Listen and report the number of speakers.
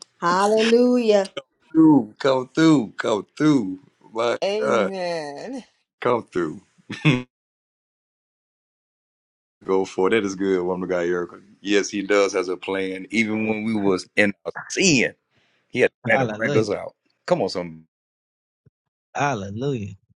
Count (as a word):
four